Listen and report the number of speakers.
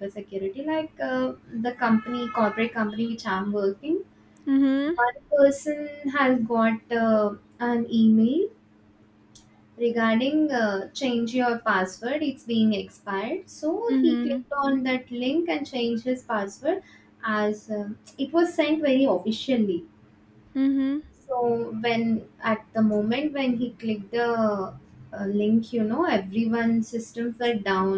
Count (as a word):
two